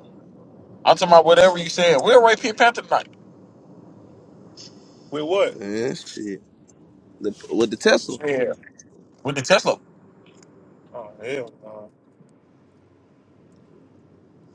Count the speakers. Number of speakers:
three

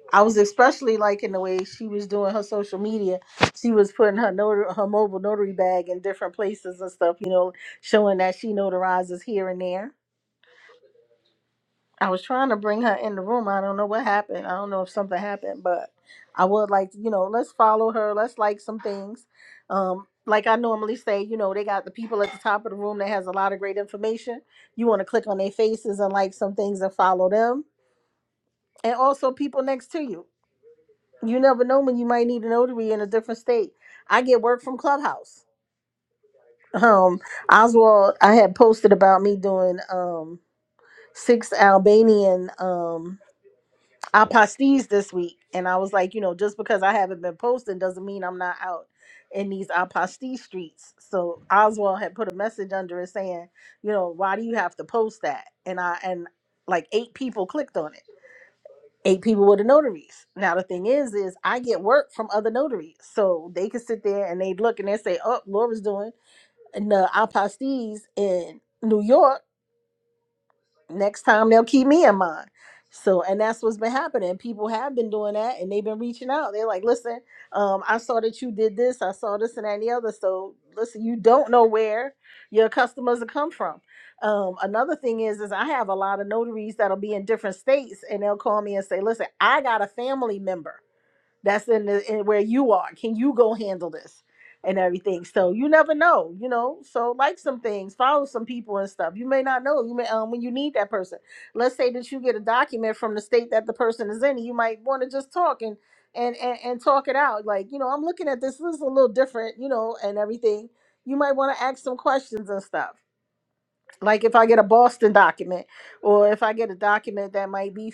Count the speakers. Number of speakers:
one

